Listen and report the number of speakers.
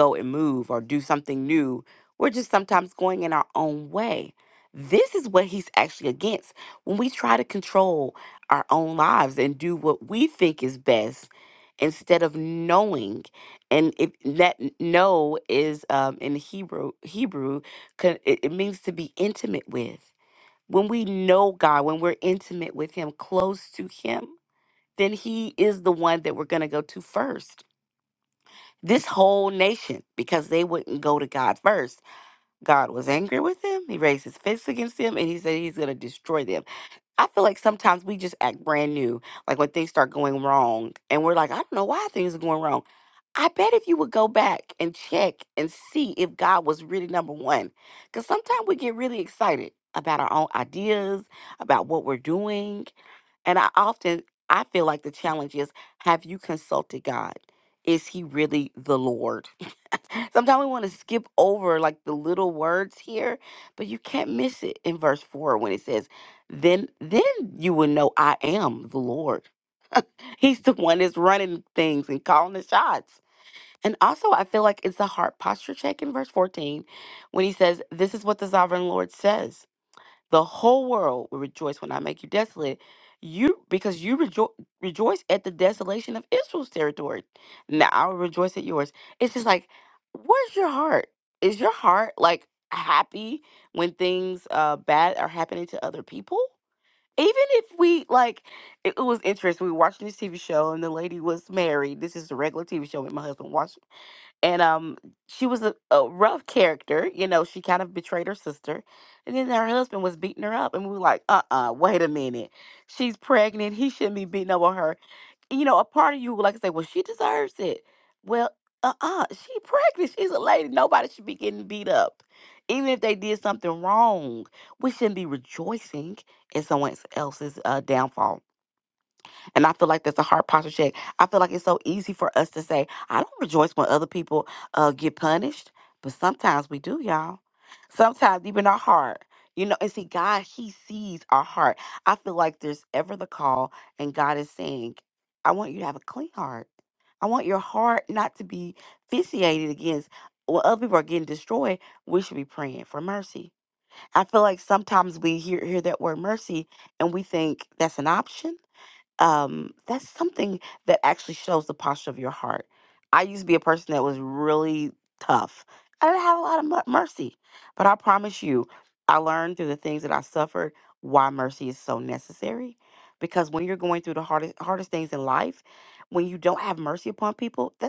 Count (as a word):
one